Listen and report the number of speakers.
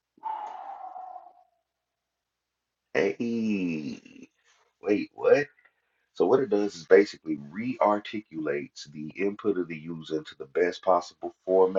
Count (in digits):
1